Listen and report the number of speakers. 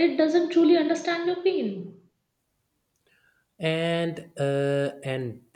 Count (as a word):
two